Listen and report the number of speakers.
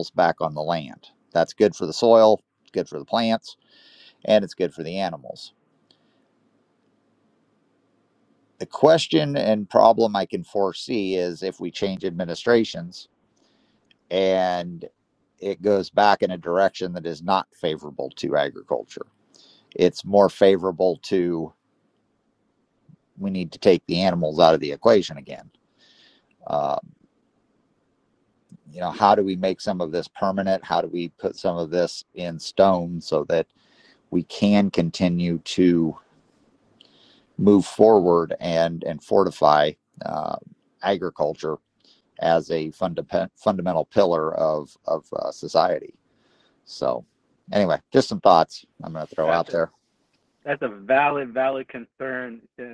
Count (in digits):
2